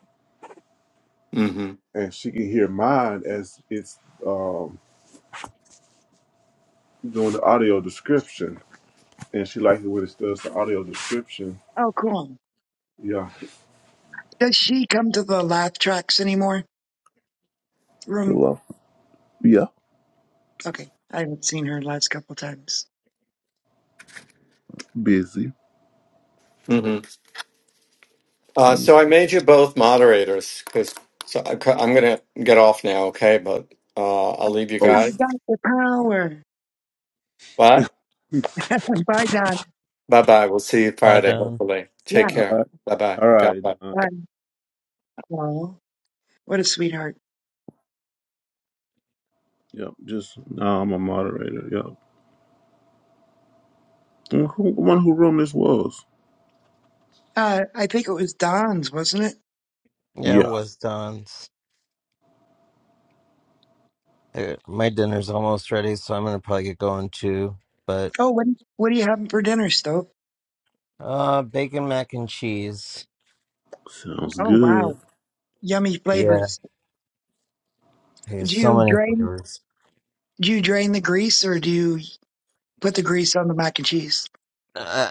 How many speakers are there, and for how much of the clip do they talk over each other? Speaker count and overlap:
4, about 5%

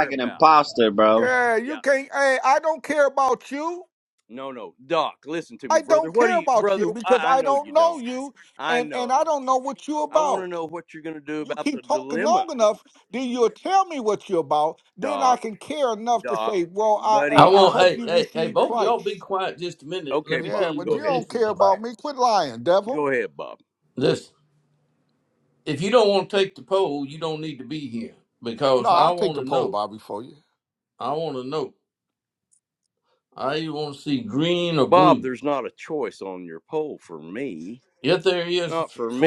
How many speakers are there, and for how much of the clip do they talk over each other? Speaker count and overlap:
4, about 27%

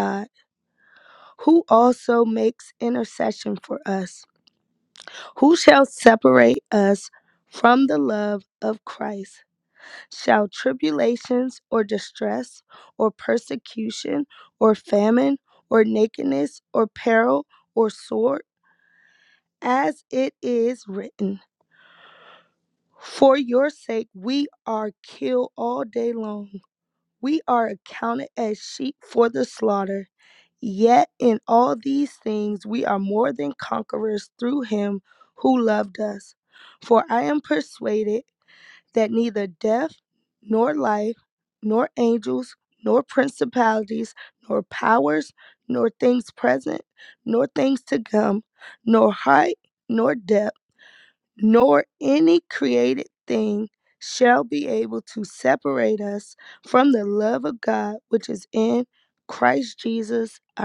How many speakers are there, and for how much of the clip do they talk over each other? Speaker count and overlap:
1, no overlap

